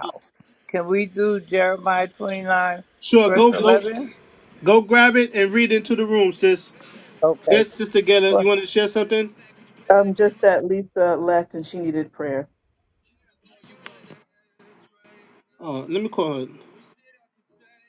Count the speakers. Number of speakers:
3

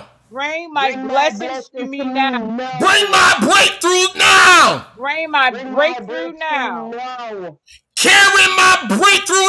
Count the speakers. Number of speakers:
3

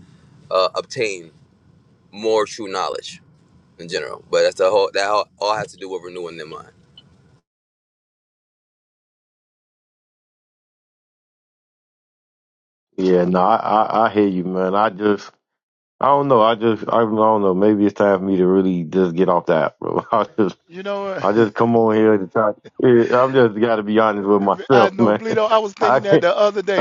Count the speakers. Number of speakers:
3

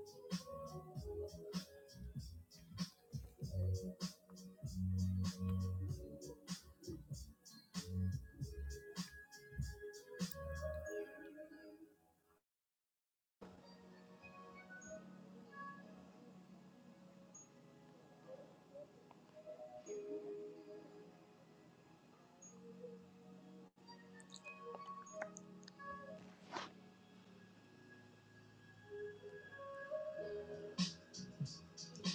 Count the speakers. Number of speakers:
0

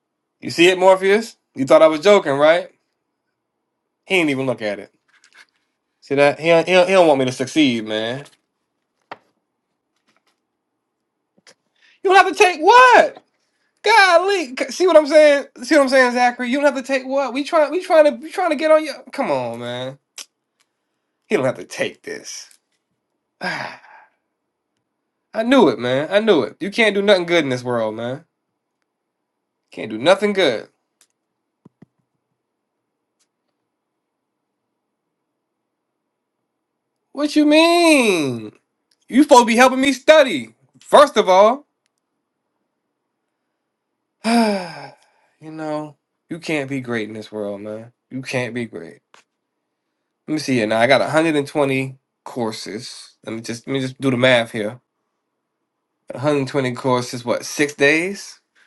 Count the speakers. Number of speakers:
1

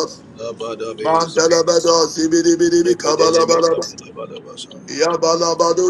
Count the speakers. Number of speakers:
2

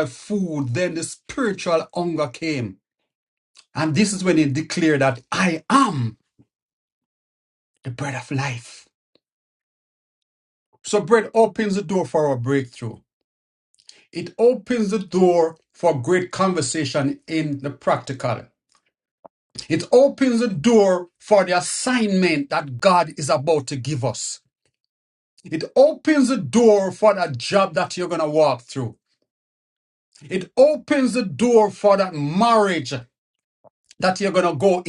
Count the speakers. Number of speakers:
1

